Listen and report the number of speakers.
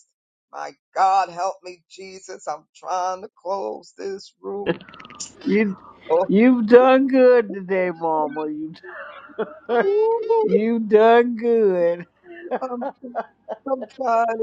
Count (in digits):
2